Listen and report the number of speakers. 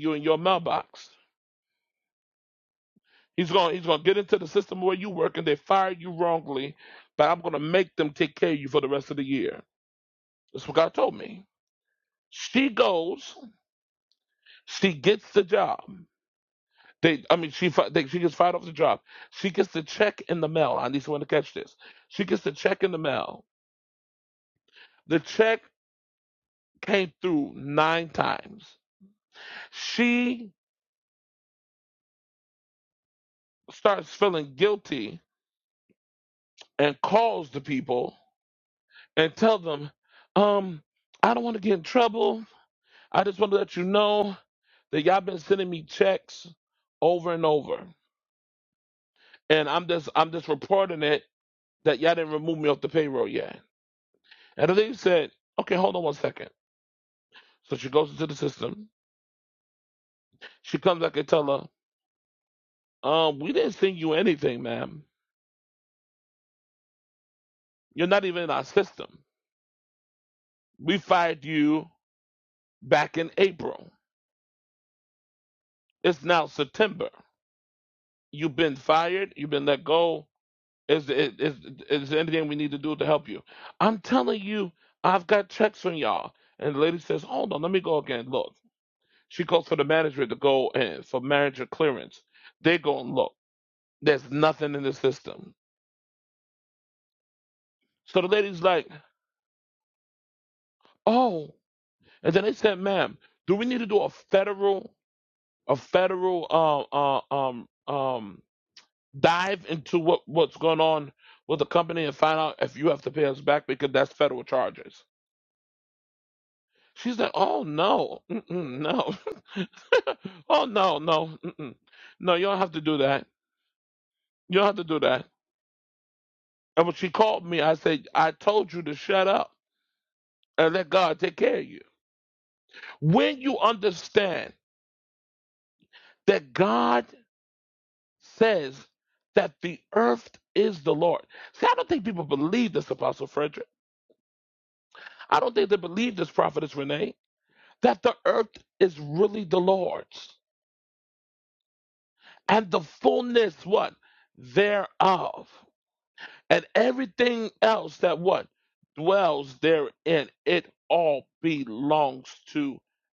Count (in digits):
1